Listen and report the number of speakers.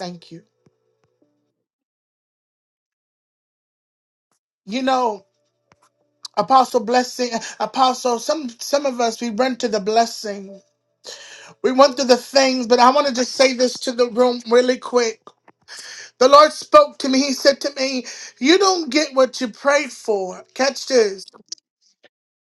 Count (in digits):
1